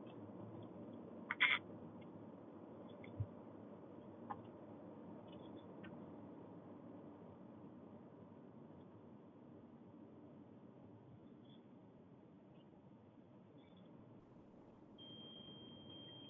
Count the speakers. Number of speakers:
0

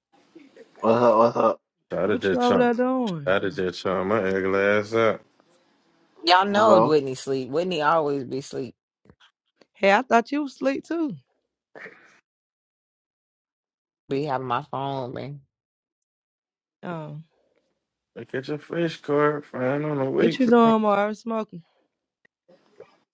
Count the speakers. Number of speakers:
4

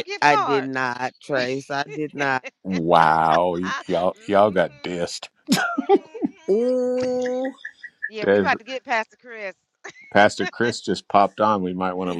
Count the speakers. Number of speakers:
4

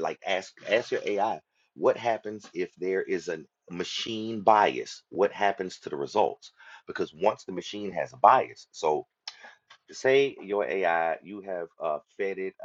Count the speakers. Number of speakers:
1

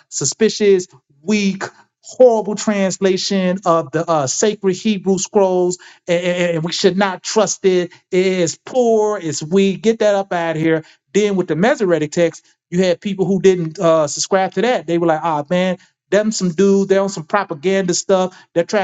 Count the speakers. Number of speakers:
1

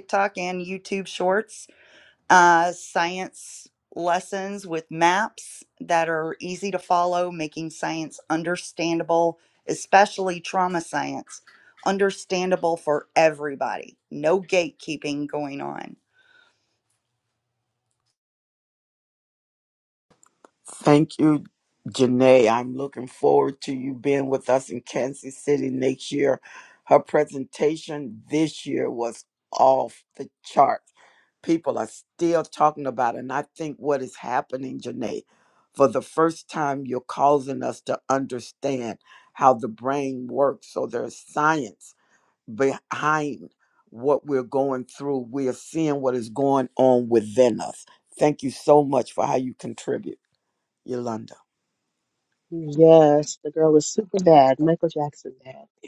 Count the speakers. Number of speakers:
3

